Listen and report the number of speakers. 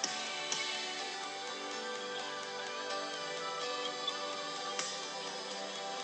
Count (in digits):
0